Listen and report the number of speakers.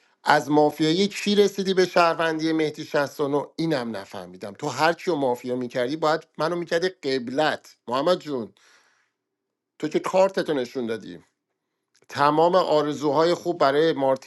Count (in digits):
1